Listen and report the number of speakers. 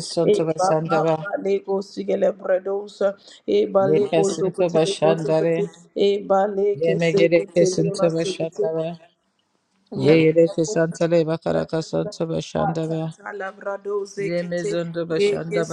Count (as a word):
two